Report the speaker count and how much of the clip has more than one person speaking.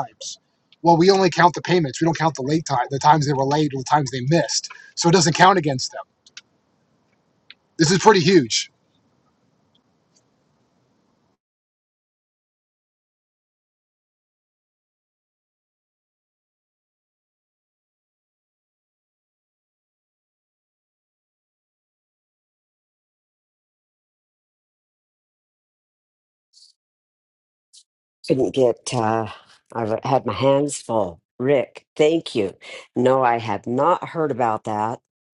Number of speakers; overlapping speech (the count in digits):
2, no overlap